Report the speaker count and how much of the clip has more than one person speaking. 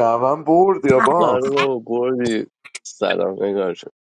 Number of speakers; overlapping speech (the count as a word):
two, about 9%